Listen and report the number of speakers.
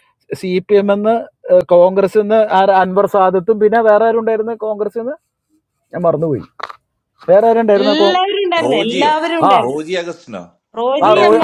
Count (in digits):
3